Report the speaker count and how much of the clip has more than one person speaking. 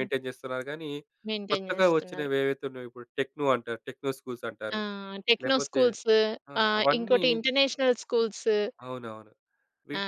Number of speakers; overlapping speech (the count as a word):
two, about 22%